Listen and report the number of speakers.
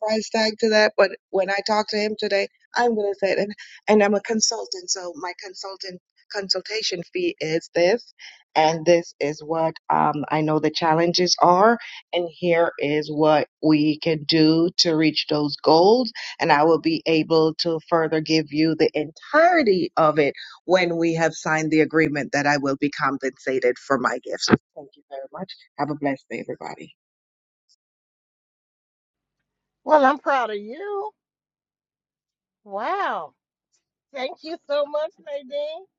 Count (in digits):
2